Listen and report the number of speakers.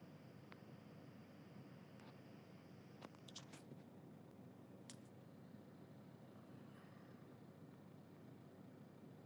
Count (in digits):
0